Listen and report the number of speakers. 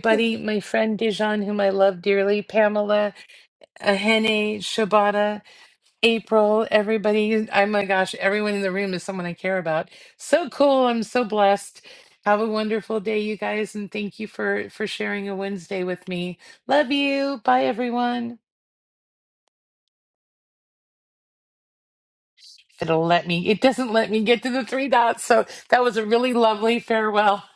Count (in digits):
1